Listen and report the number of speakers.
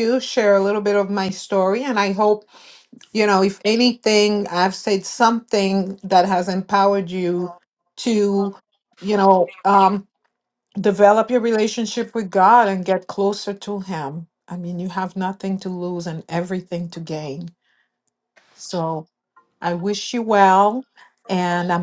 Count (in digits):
1